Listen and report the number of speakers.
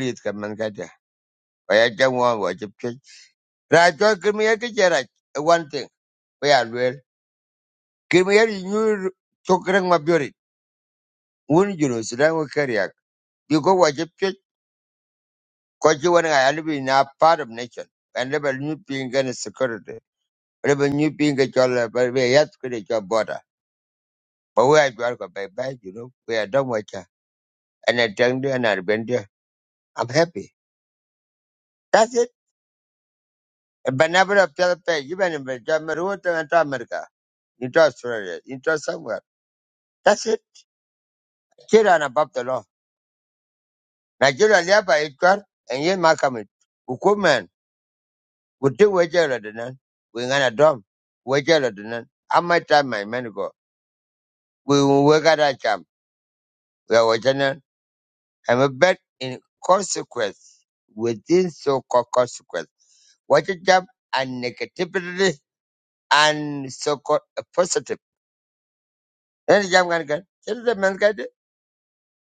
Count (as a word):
one